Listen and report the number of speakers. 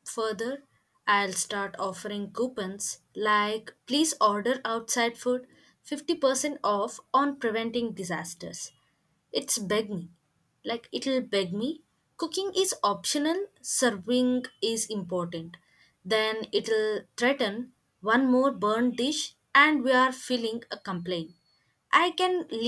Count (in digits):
1